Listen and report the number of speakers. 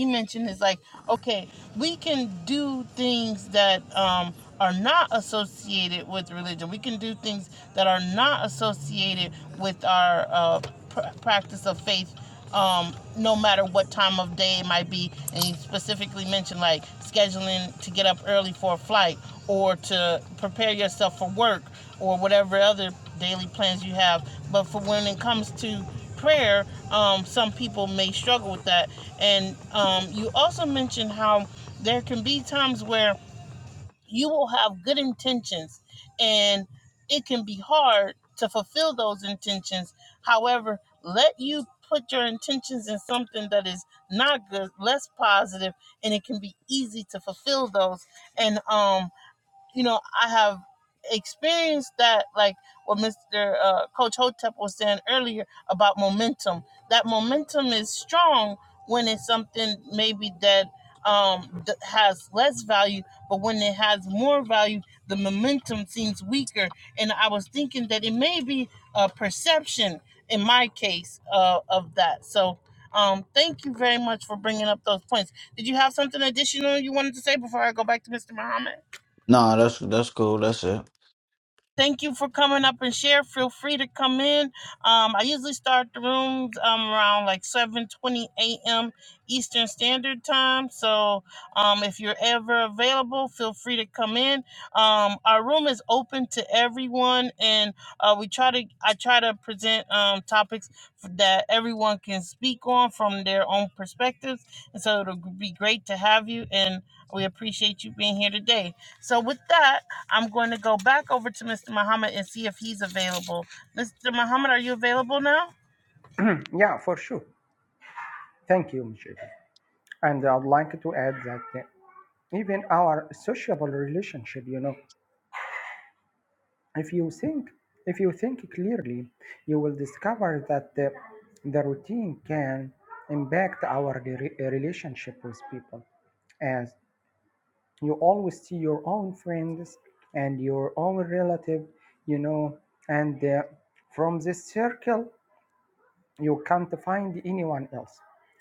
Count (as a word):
three